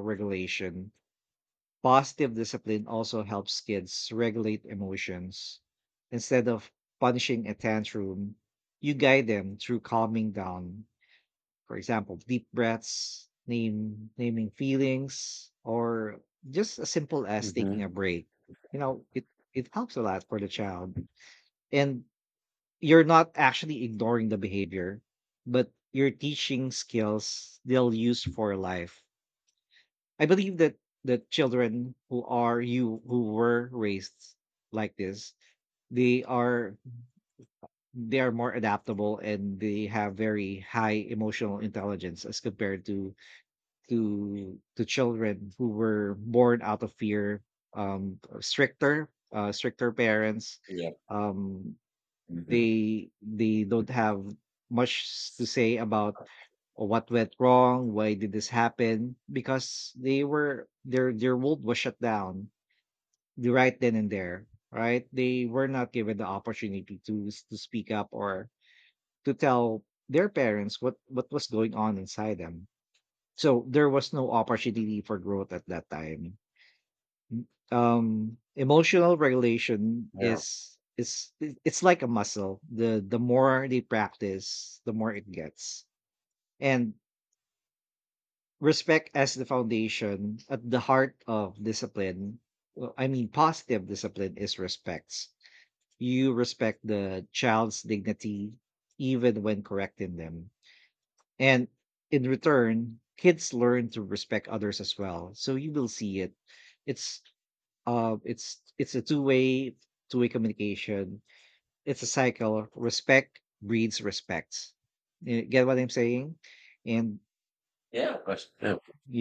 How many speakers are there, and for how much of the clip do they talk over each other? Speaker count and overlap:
2, about 1%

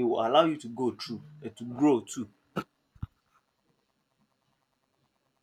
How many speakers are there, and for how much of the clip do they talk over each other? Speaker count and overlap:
1, no overlap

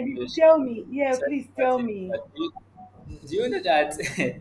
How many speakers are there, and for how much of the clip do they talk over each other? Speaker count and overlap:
2, about 32%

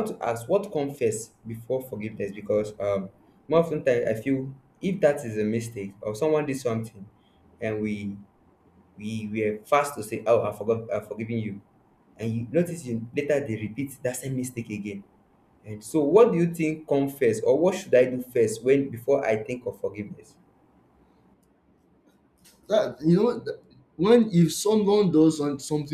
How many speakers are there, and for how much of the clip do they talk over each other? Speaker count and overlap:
2, no overlap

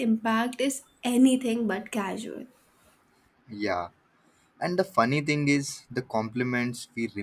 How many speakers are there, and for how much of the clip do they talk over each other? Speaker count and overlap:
2, no overlap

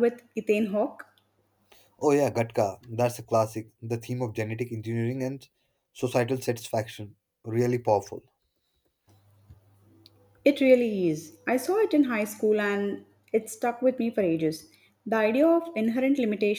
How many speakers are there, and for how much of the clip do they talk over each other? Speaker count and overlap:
2, no overlap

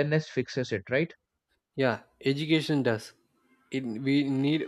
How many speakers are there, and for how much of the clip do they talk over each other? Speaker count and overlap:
2, no overlap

